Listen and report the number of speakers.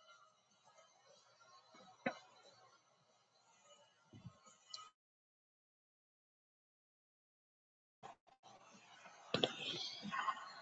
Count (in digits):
0